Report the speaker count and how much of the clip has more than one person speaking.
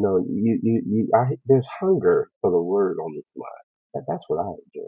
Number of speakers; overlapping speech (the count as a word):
one, no overlap